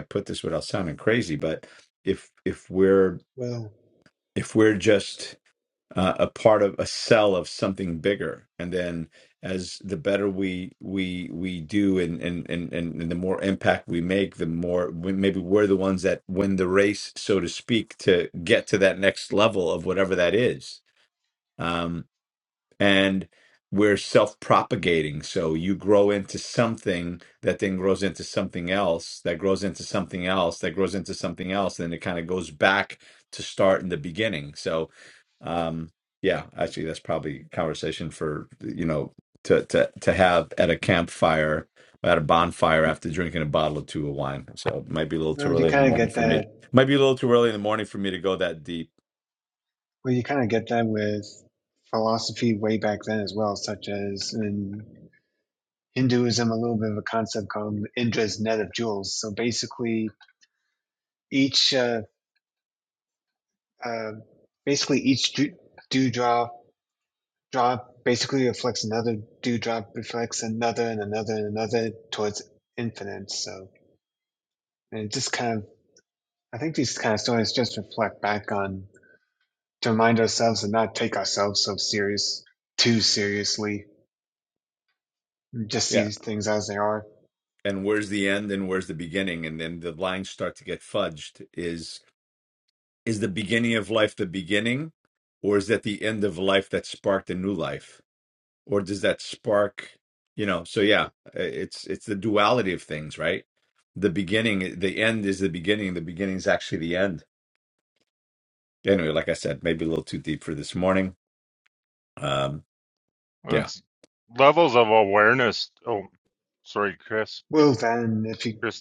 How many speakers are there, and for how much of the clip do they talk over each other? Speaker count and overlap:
three, about 1%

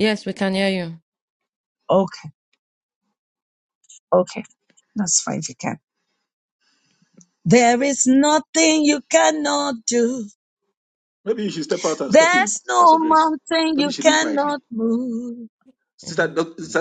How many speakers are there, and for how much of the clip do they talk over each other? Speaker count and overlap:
three, about 11%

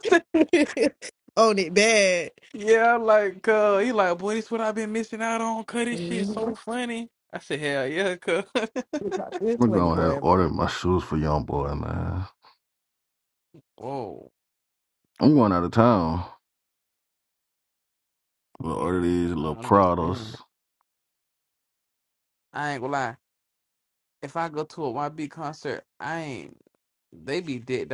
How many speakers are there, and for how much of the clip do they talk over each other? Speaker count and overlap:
three, about 8%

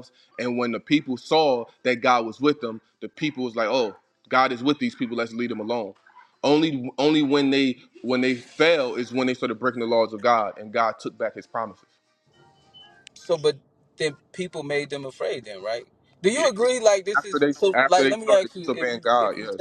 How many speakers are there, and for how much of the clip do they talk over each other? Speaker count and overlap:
two, about 13%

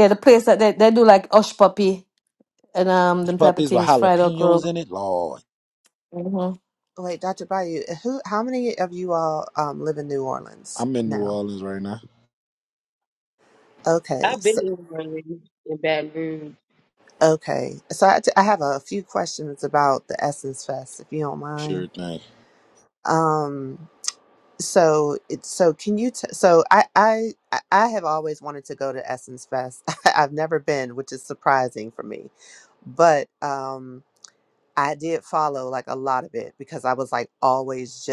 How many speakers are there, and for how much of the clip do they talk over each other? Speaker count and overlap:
four, about 6%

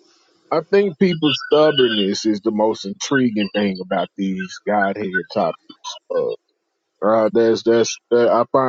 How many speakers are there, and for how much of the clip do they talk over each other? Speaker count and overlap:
one, no overlap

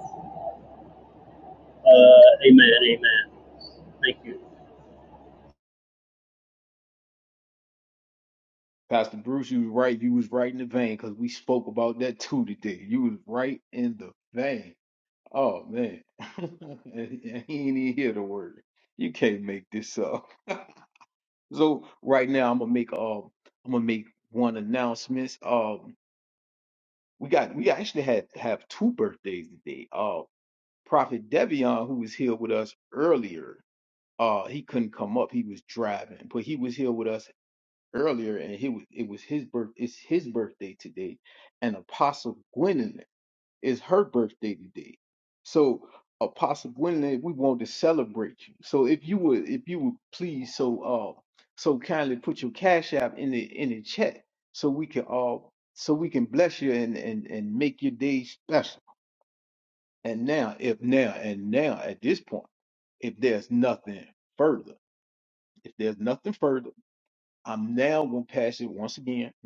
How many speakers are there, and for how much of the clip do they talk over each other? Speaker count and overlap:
two, no overlap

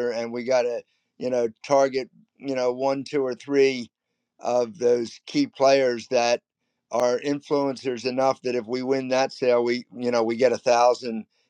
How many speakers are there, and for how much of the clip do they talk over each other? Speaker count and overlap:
one, no overlap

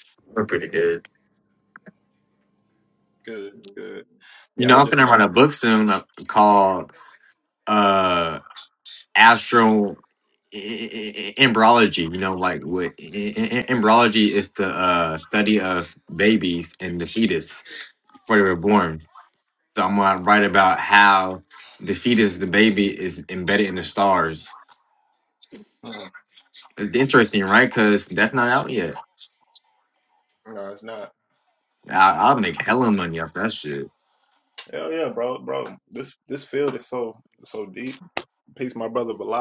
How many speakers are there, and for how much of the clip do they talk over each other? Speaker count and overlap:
two, about 2%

